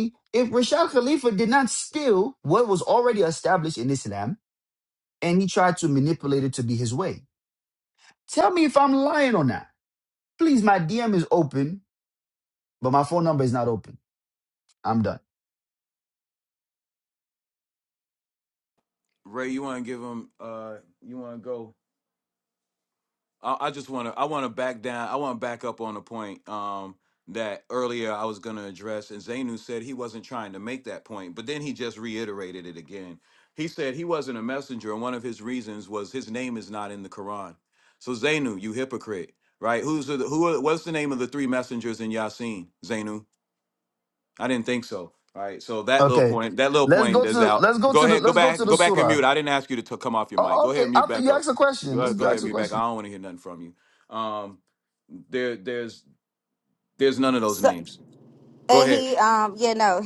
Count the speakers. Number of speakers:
three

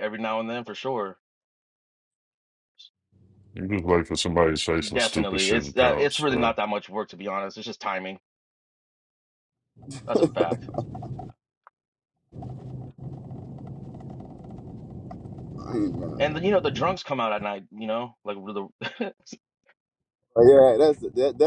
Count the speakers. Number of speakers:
three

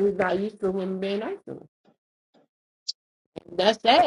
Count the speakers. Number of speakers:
one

